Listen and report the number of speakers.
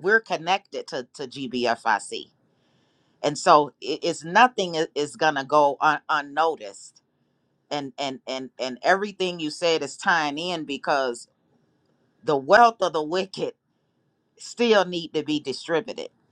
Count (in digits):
1